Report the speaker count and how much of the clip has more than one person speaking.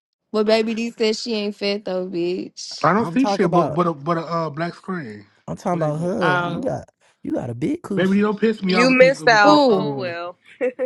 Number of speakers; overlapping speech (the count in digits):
4, about 27%